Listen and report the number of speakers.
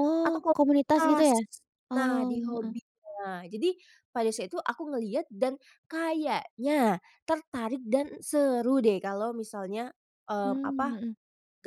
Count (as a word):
two